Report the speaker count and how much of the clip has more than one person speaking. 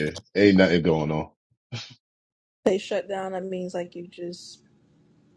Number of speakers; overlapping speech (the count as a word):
two, about 2%